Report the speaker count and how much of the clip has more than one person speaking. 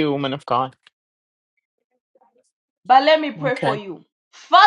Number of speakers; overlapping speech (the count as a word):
two, about 9%